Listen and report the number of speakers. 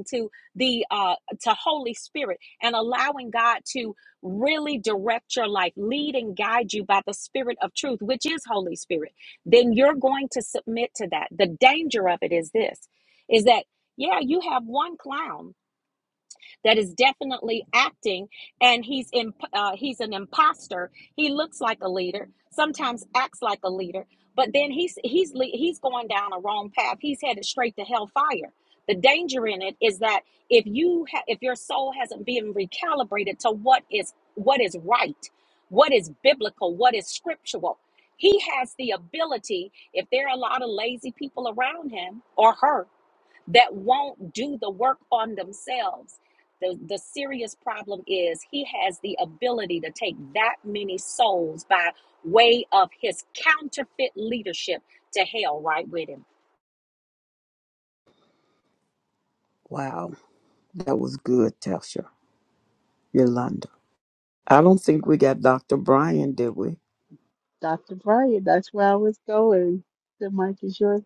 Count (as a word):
three